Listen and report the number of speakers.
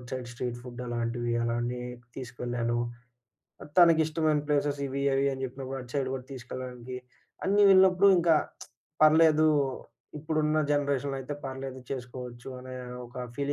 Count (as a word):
one